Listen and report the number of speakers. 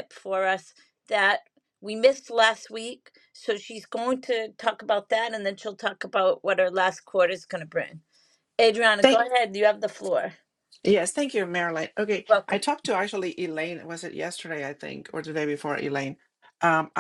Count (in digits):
2